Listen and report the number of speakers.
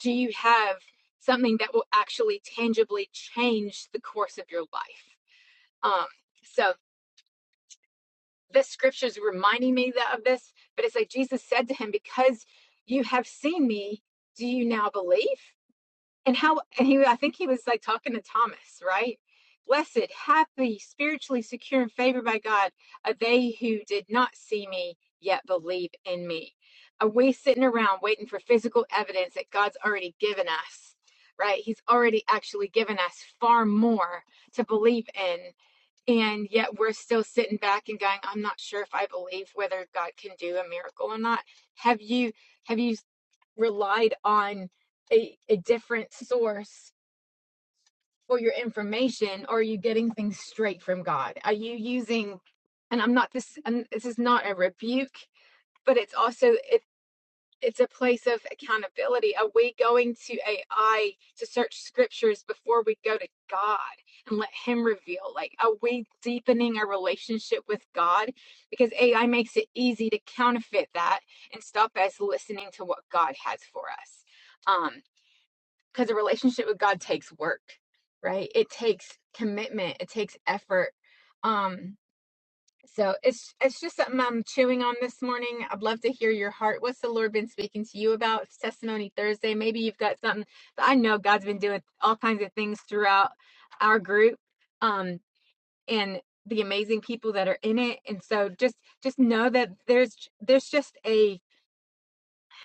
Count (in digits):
1